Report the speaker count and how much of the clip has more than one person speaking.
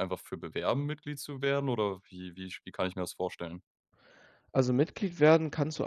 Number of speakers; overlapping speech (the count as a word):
two, no overlap